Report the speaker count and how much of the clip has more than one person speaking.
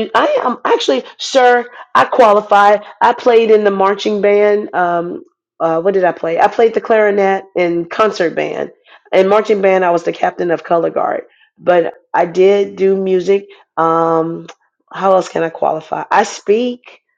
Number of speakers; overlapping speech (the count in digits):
1, no overlap